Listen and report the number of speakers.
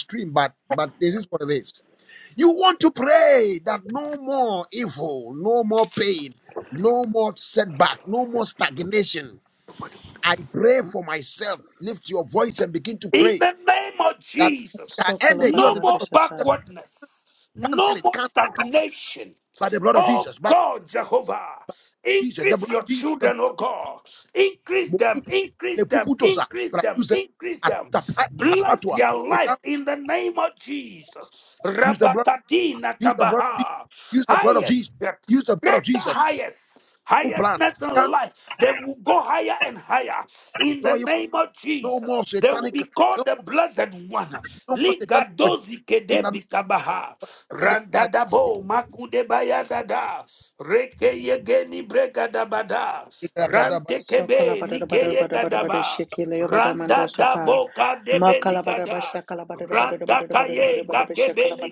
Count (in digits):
3